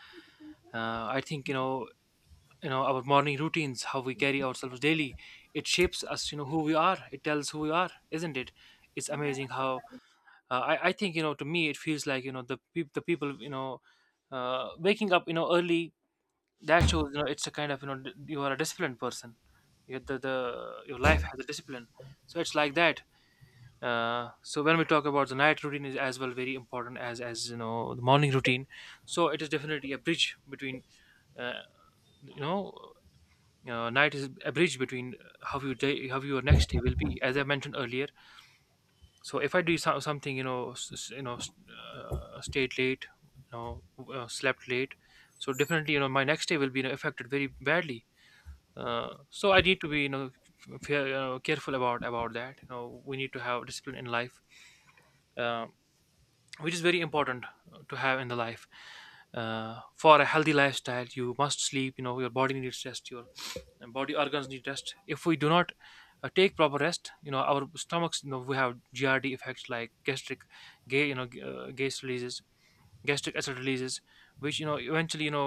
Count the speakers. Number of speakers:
one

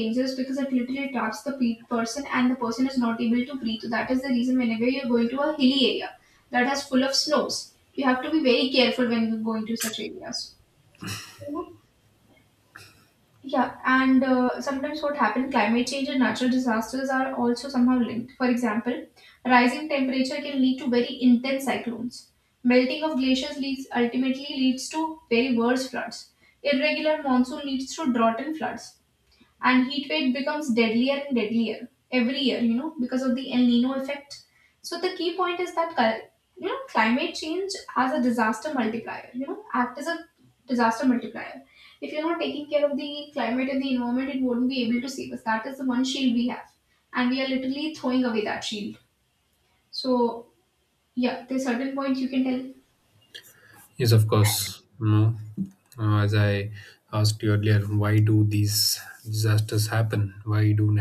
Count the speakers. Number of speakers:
two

